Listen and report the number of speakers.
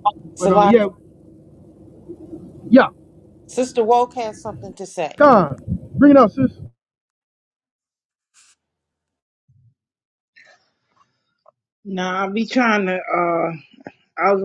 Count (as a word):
three